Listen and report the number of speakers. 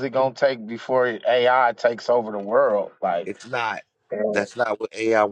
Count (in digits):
2